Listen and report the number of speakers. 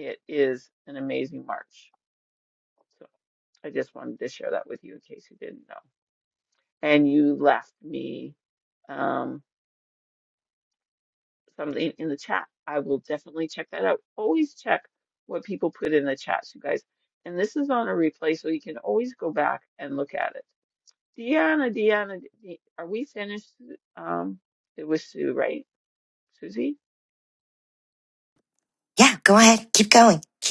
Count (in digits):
2